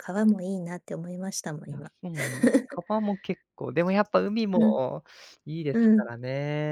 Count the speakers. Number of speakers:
2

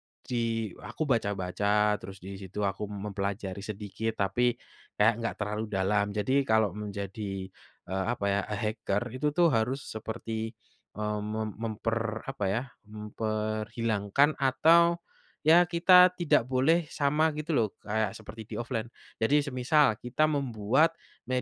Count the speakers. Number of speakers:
1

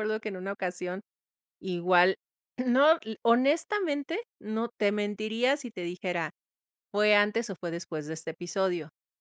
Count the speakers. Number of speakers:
1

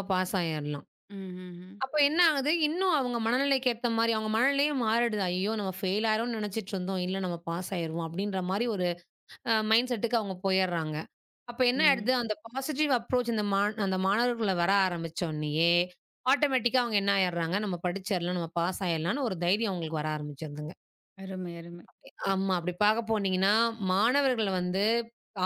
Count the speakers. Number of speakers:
2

